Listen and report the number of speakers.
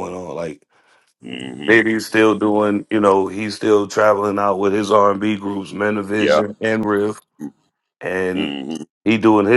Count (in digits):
2